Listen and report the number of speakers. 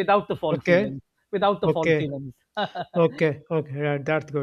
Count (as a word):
two